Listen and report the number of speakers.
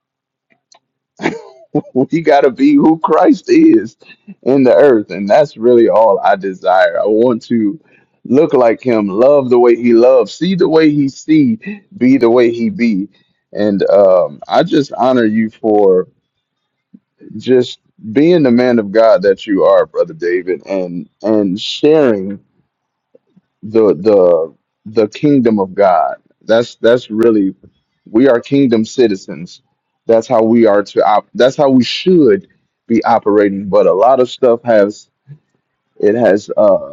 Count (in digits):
1